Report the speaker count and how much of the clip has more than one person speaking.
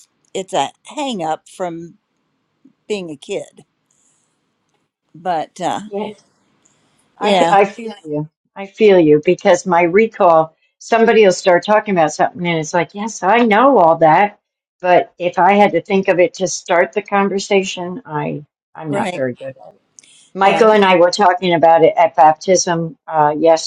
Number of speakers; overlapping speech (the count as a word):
two, about 4%